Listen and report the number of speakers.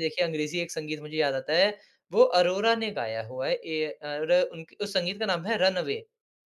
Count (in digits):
1